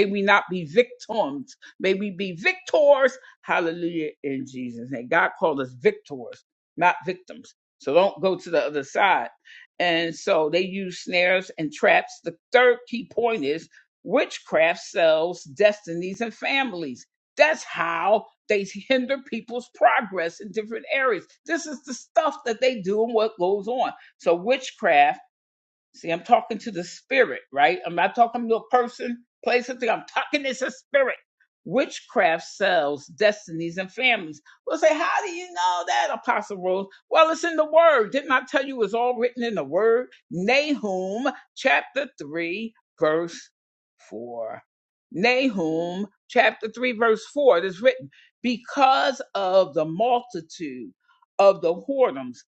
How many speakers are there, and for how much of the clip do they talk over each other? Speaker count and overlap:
one, no overlap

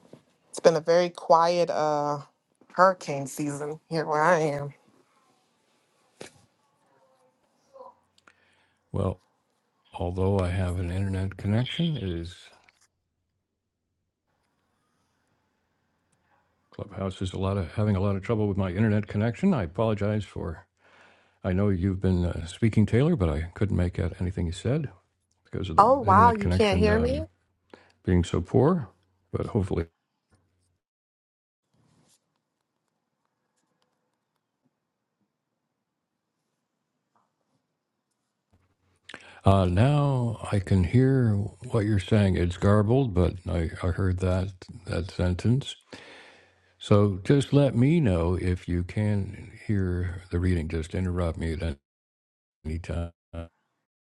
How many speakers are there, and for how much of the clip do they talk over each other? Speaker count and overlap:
two, about 3%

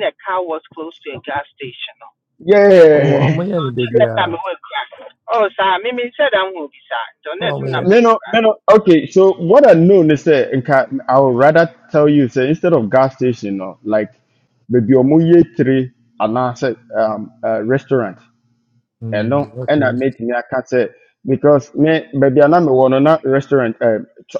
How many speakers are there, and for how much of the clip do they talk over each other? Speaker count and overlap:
three, about 10%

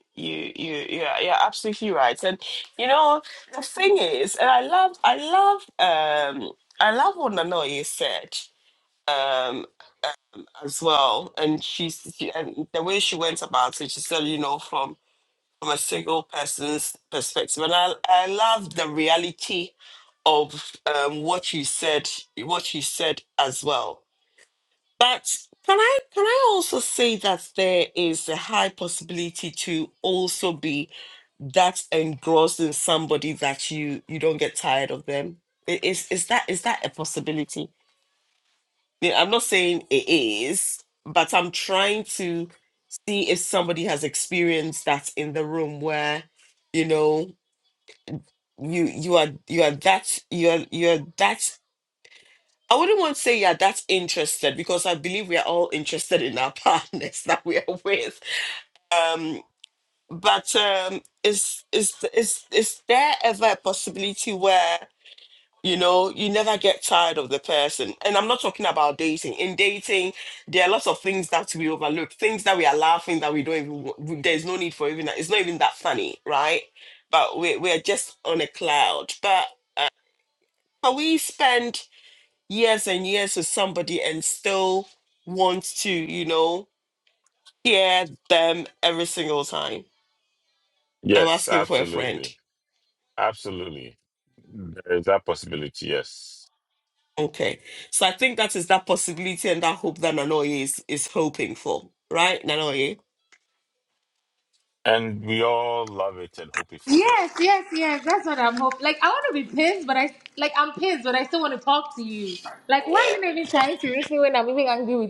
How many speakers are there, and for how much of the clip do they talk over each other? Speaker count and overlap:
three, about 2%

